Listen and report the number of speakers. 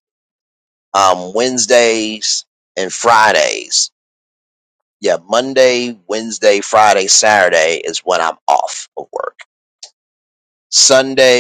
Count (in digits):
1